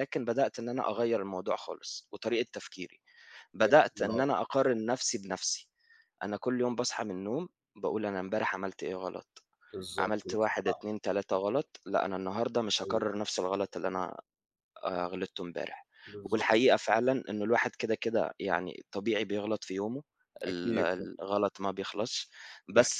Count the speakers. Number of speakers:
two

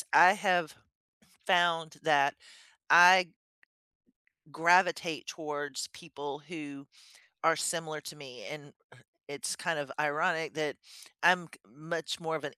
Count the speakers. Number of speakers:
one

